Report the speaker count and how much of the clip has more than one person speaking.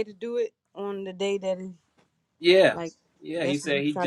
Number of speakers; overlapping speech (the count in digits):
2, about 19%